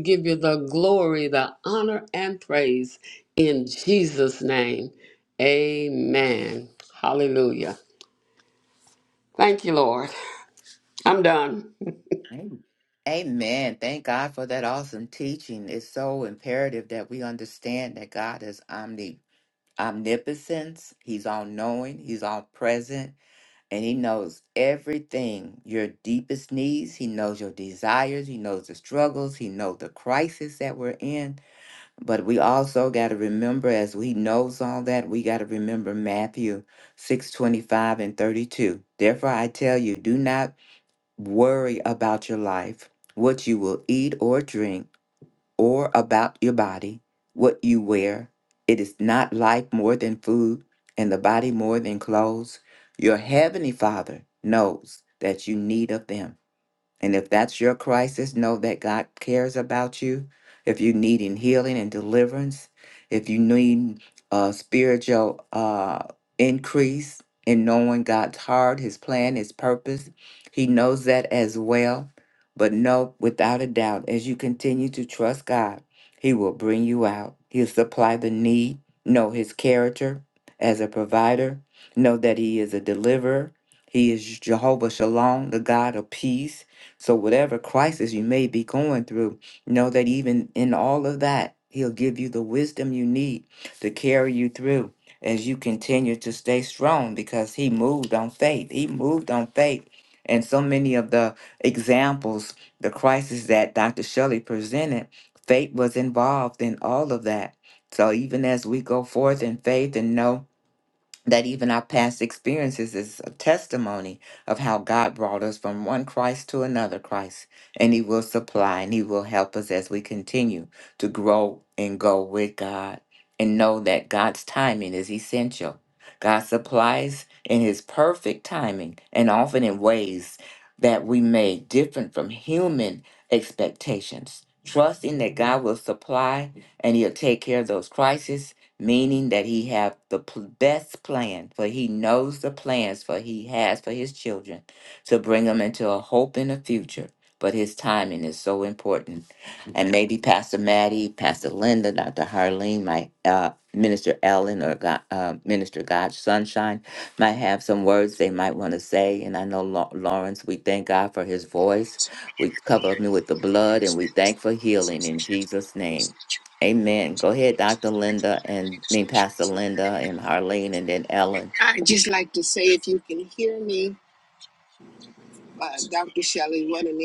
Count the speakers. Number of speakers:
3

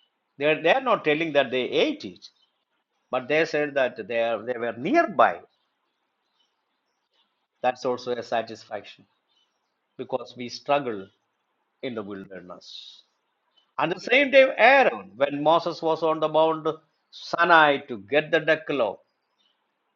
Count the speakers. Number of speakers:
1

